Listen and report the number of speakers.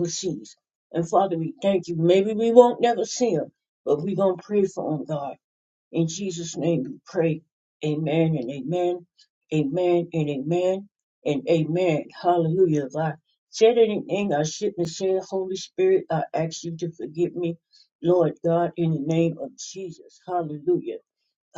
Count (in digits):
1